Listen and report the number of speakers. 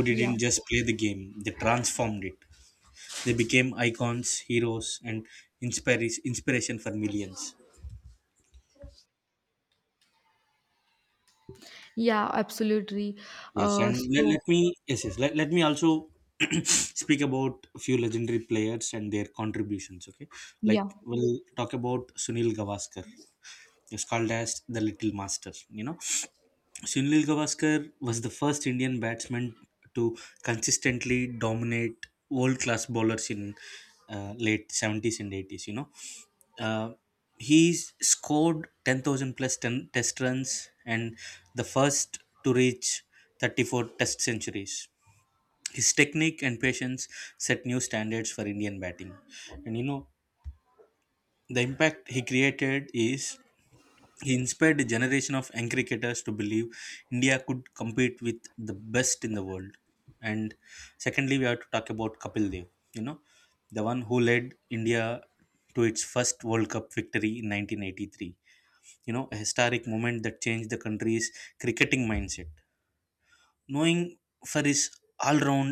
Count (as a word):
two